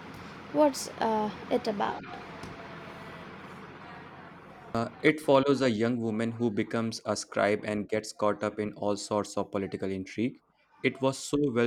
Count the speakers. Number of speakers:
two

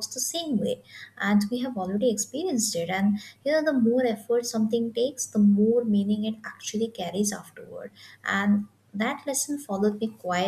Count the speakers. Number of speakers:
one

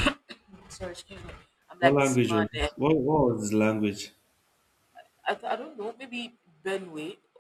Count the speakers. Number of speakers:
two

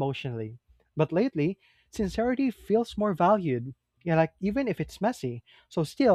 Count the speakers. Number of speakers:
one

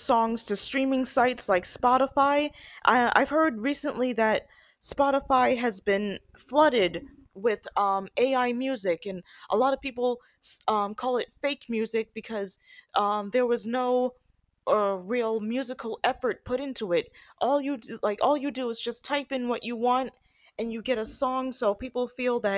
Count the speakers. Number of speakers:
one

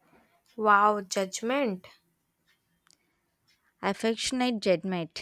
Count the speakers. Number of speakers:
two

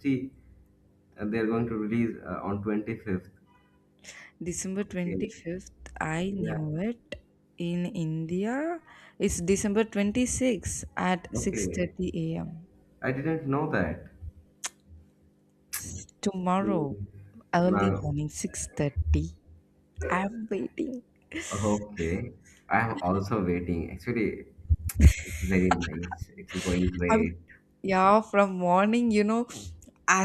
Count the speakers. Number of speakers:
two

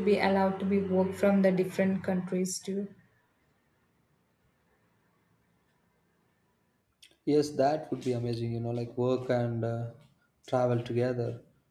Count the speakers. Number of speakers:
two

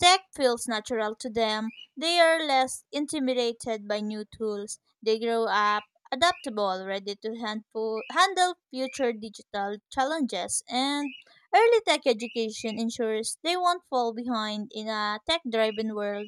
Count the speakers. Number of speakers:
one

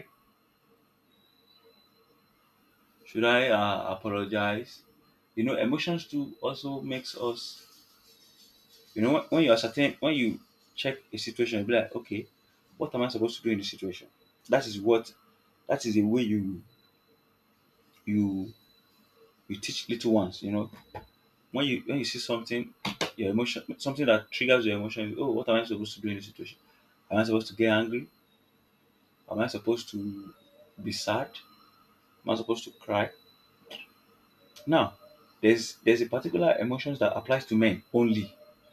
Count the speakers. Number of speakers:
one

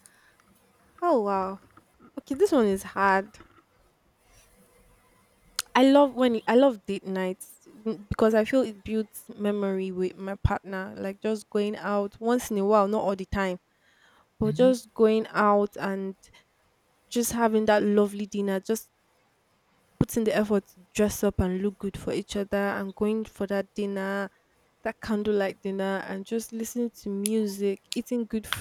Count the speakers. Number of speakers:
one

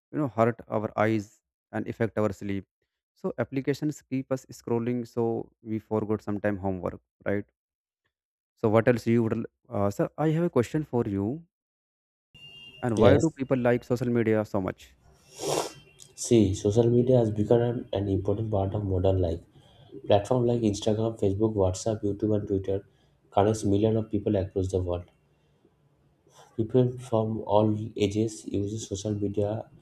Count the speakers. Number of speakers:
two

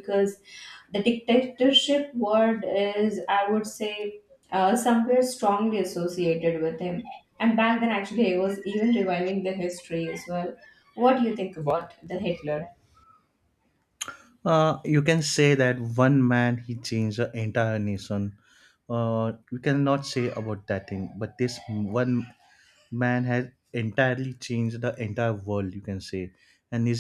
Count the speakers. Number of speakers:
two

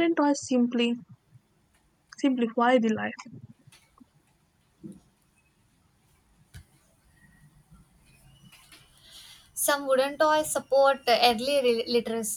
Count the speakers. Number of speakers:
two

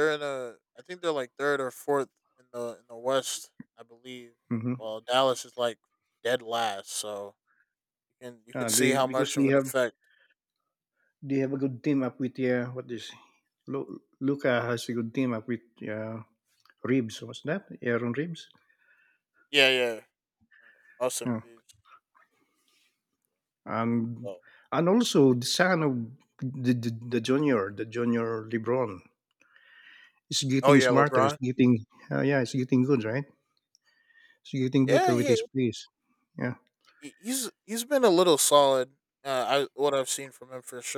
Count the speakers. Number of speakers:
two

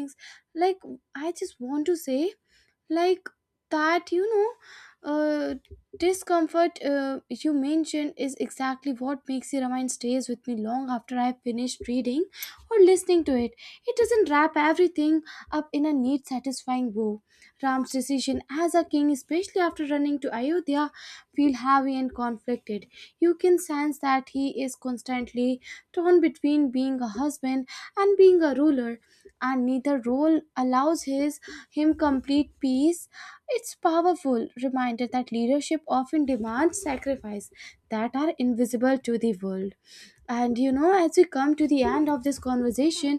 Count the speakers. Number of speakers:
one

